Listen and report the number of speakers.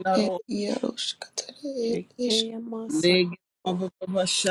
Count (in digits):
3